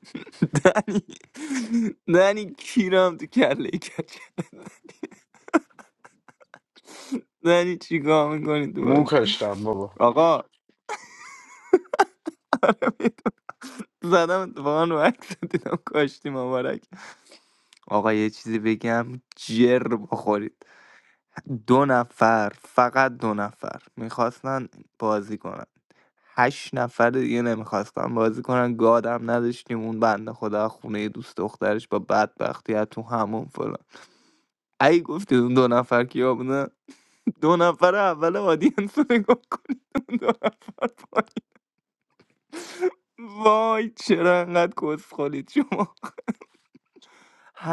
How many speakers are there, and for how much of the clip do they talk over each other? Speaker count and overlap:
2, about 1%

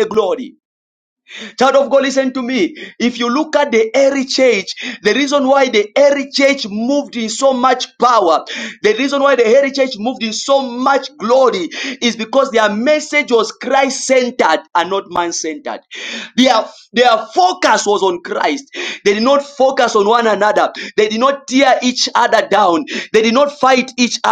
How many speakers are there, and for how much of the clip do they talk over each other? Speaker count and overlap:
1, no overlap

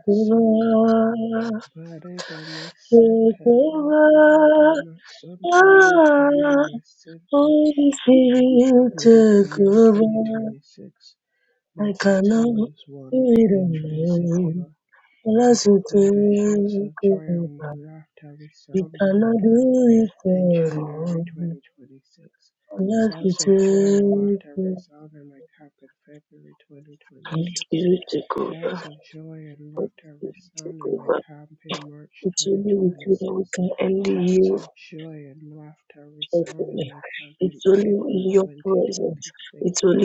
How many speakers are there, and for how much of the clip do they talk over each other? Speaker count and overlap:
2, about 49%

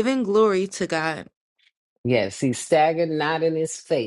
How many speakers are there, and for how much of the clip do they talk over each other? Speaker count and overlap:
2, no overlap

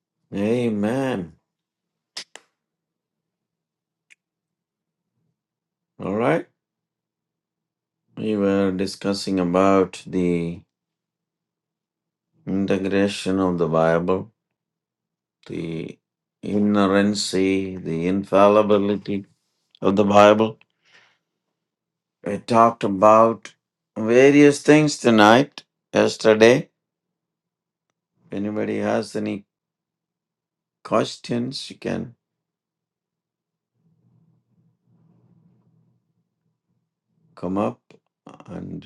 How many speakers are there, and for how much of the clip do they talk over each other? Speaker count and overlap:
1, no overlap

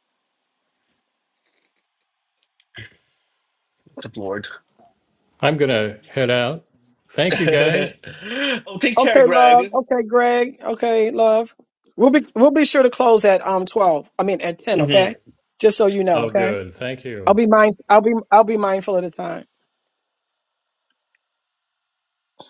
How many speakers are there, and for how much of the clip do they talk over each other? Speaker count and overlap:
3, about 8%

